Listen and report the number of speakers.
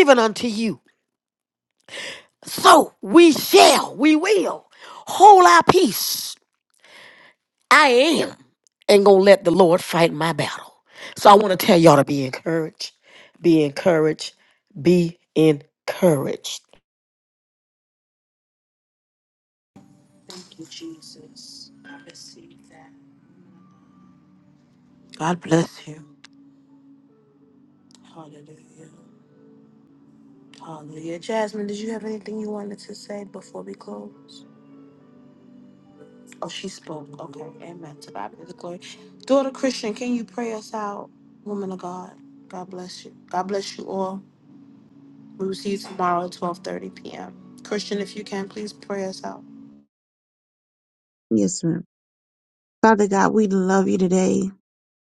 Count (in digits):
3